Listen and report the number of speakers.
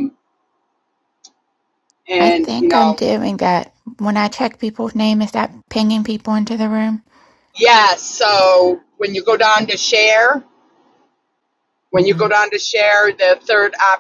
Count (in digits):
2